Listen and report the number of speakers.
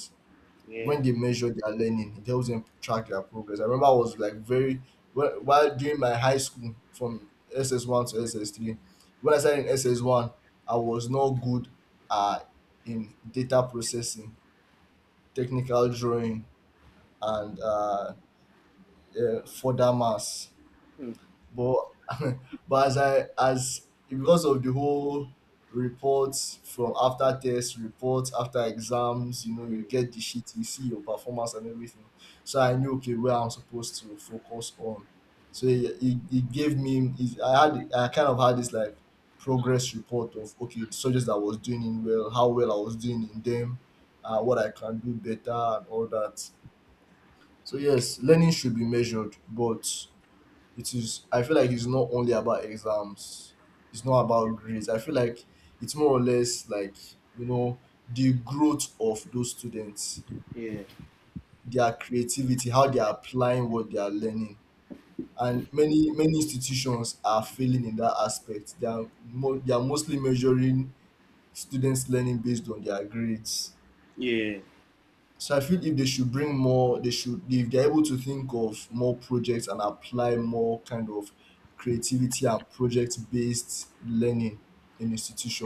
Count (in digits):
2